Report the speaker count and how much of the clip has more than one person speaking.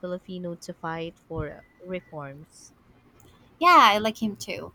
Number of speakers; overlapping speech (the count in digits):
2, no overlap